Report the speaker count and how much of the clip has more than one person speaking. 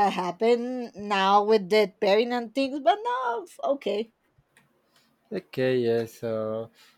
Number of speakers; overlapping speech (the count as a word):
two, no overlap